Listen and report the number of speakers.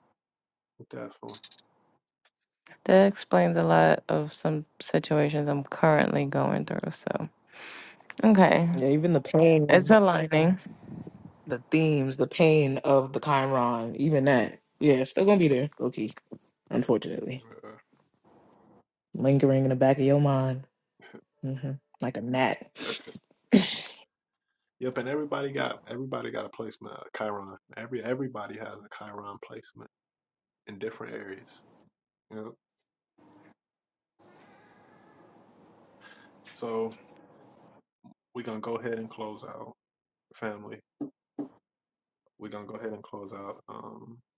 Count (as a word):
three